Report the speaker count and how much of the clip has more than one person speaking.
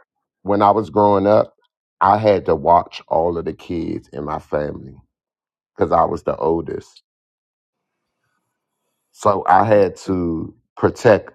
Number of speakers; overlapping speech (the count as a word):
one, no overlap